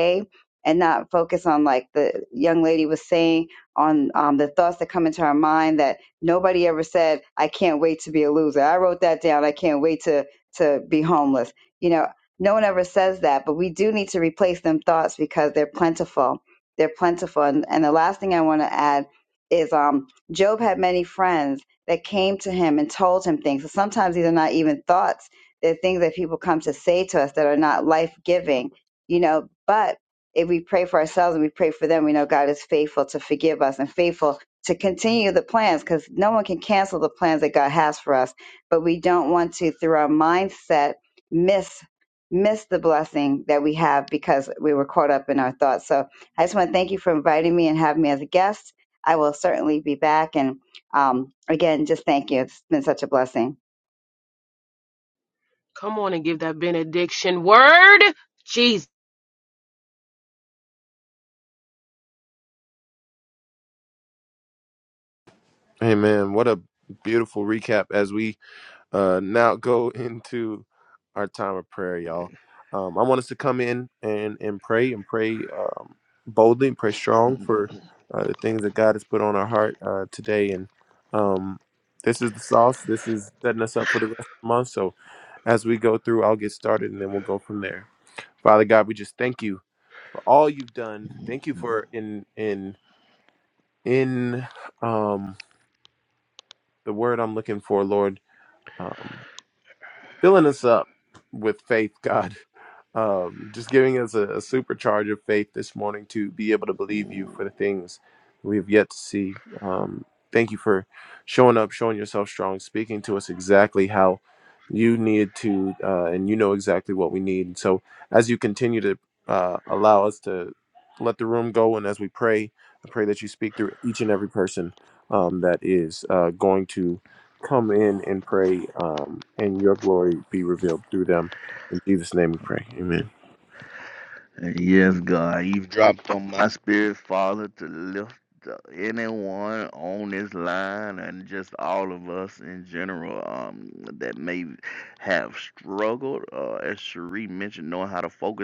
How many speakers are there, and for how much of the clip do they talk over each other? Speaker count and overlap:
4, about 1%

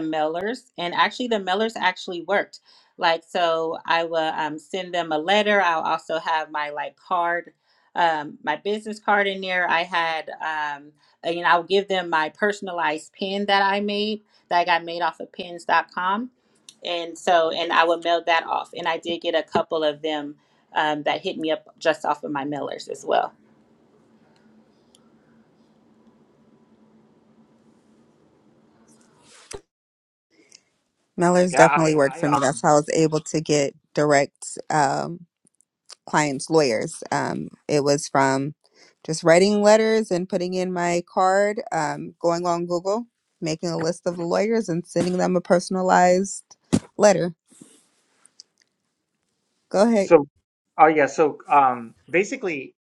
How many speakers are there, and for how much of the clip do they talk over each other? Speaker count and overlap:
3, about 2%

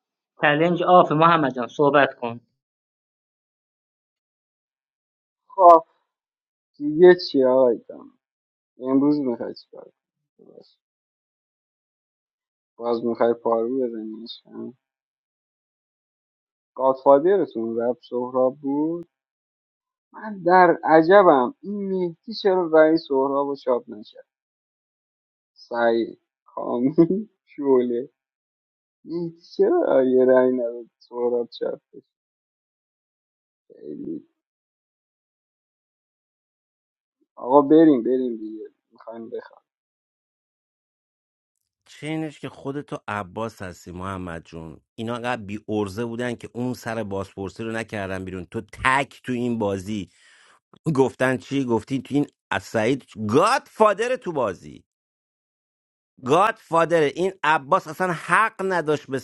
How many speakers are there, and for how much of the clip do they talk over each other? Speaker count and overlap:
3, no overlap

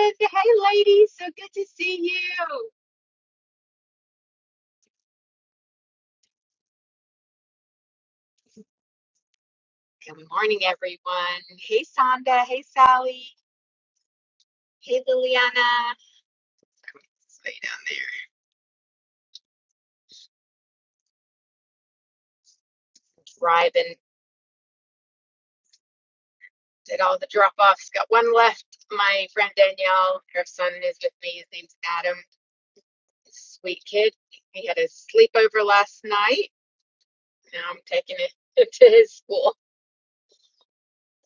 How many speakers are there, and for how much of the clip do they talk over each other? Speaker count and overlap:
1, no overlap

